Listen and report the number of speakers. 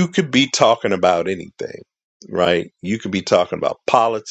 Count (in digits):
1